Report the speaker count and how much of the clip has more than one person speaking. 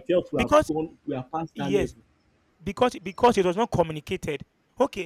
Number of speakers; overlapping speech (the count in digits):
2, about 11%